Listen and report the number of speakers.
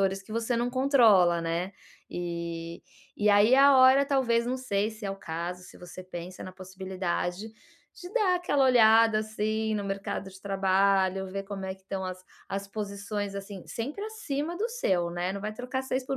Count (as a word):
one